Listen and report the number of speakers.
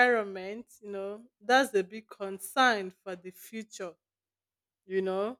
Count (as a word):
one